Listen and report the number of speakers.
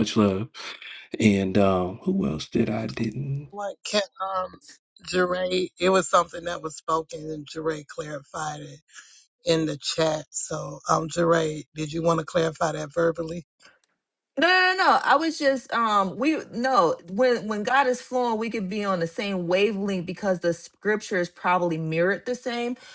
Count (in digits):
3